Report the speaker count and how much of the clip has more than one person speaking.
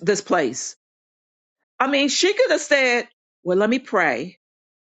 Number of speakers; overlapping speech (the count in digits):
1, no overlap